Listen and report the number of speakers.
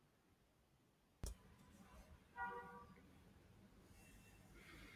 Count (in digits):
0